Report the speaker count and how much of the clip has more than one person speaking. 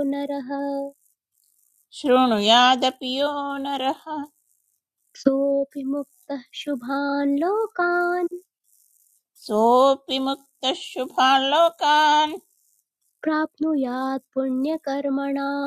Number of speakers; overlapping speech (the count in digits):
2, no overlap